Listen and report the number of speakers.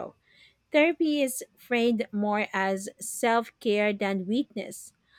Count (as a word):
one